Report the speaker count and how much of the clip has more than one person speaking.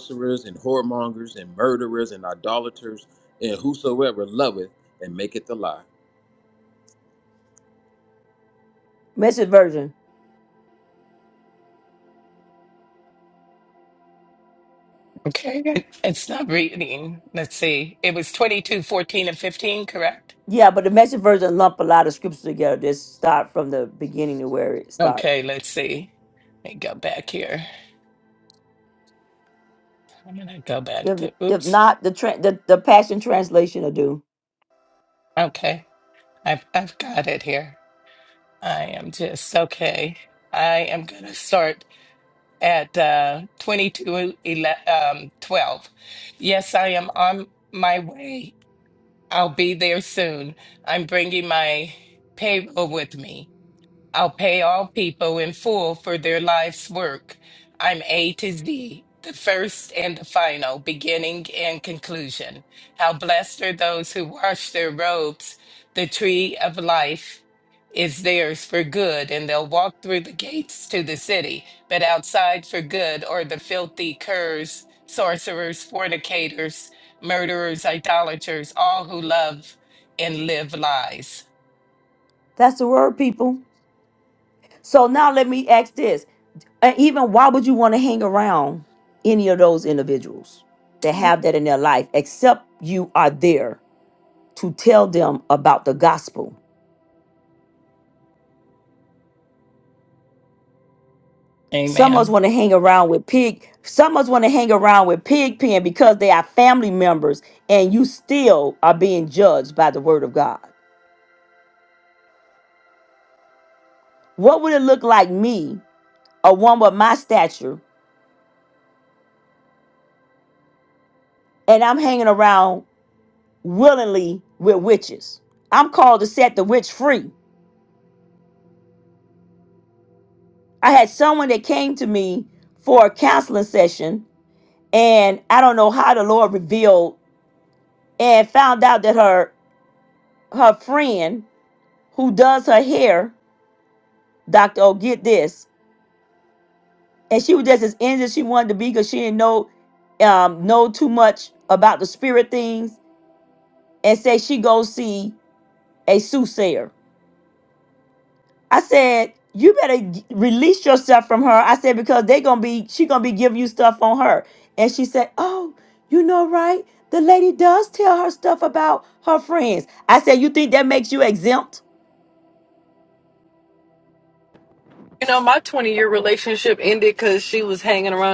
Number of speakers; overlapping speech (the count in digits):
4, about 1%